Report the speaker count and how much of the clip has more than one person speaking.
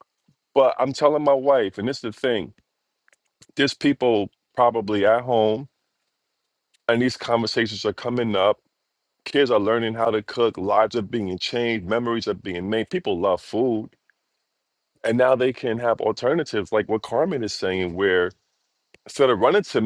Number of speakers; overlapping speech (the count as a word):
one, no overlap